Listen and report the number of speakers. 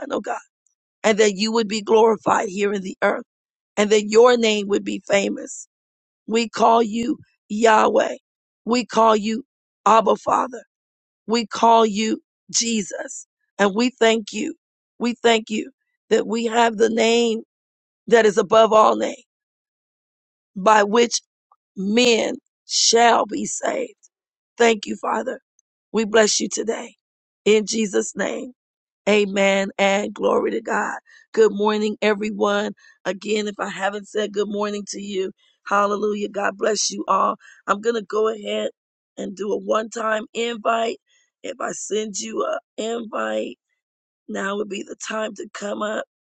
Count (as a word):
one